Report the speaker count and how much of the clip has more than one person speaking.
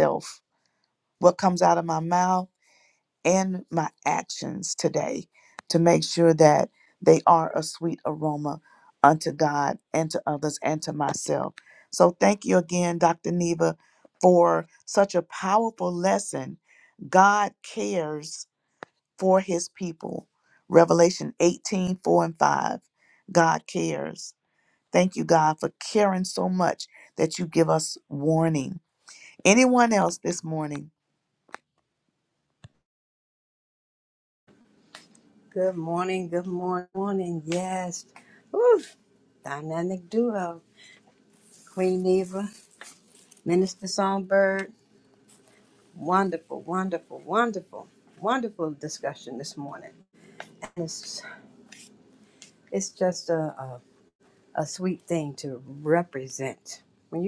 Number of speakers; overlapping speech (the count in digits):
2, no overlap